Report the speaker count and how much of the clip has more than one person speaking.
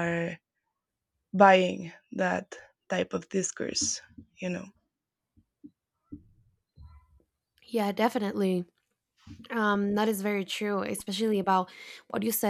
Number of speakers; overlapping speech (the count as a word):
two, no overlap